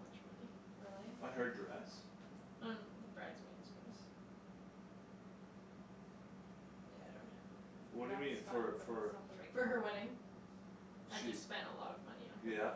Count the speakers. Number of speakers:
3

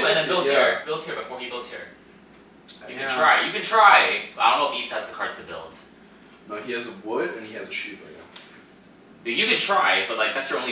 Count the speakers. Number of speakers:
2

